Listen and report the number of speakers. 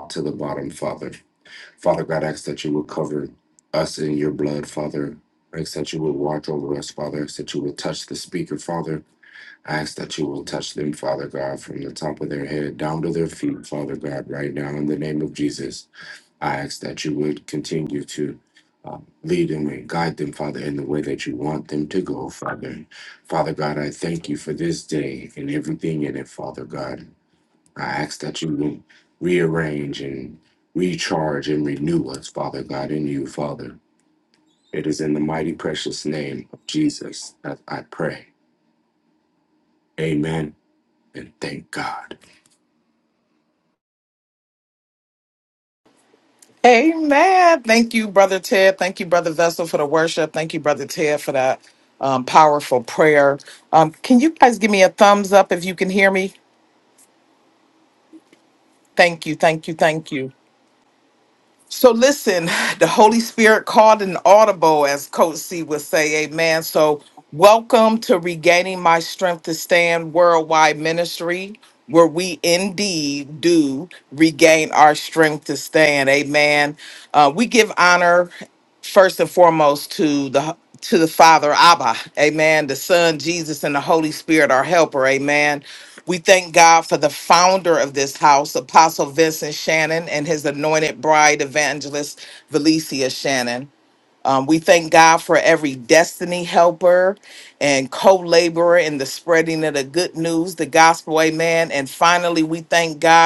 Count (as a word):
two